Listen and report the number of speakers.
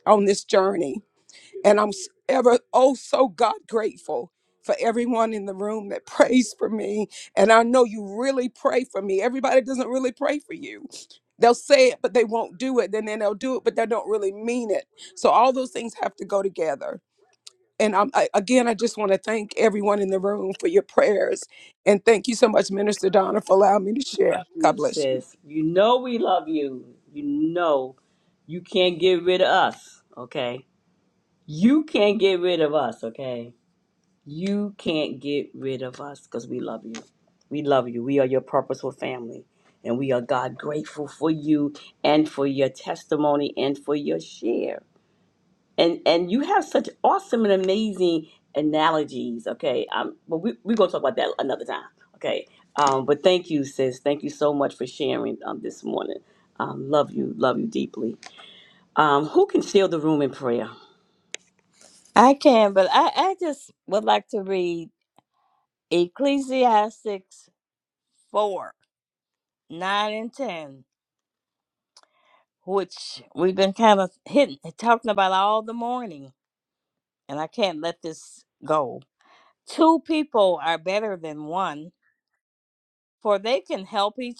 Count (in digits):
3